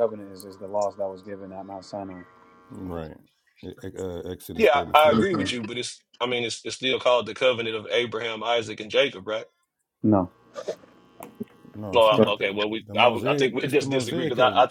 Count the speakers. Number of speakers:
3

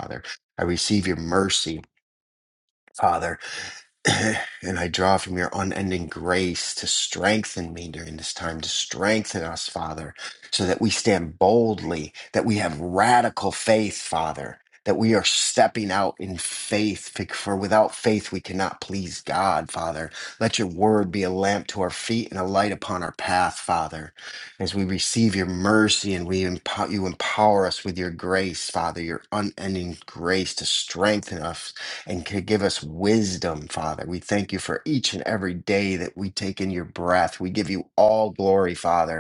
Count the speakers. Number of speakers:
1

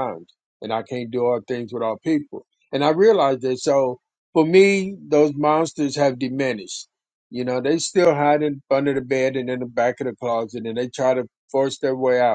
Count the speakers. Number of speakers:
1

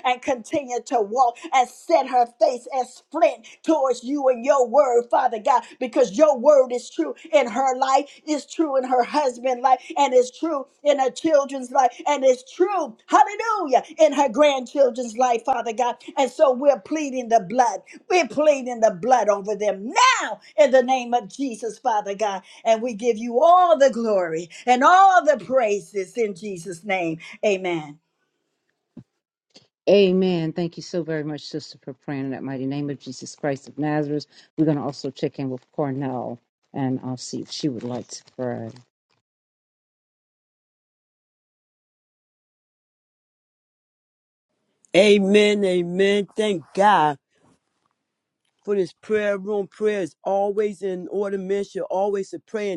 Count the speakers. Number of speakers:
3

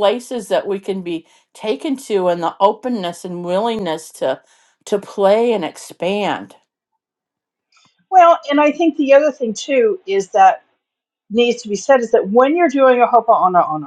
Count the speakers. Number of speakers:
2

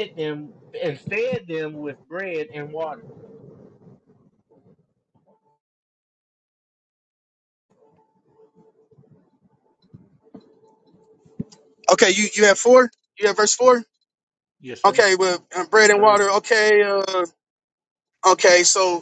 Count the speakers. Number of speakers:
2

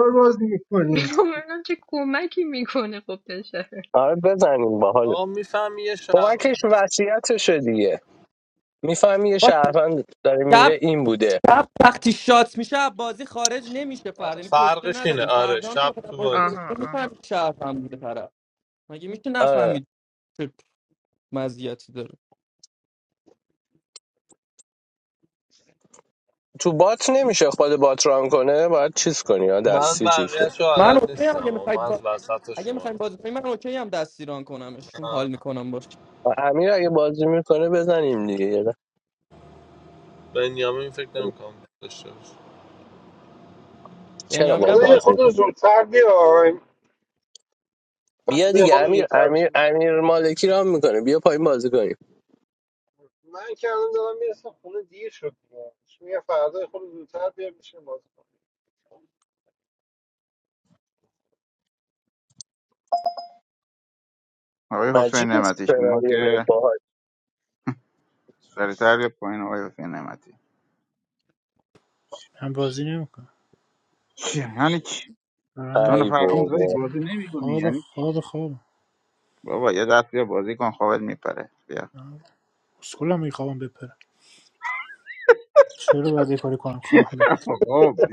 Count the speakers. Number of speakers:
8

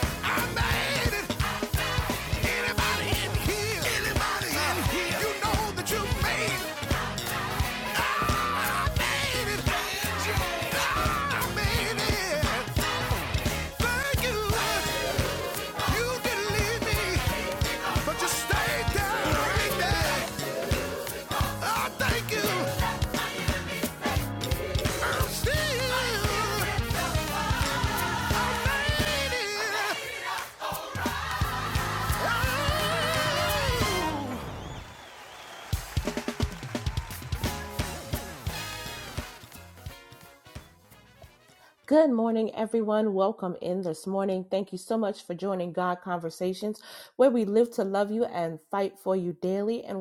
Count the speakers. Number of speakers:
2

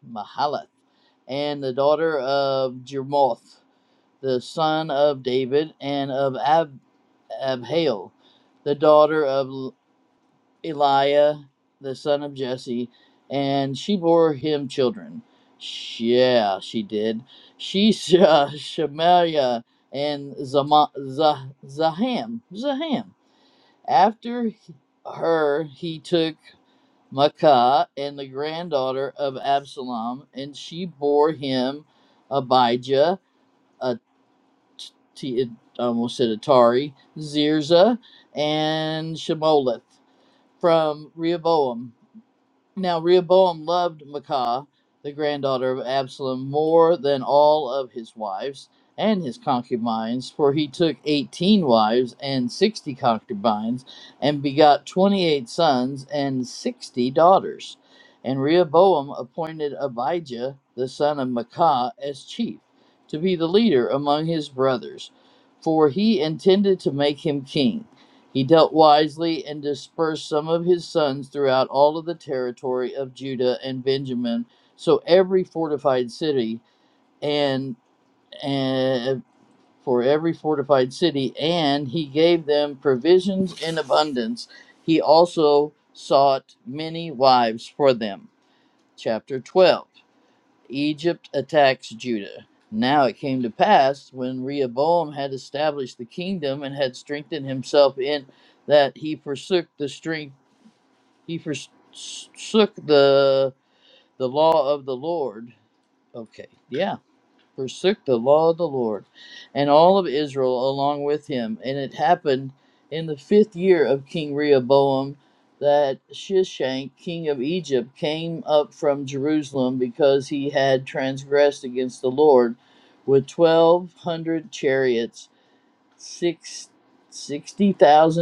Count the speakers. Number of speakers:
1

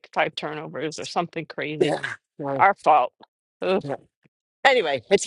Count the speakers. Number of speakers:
2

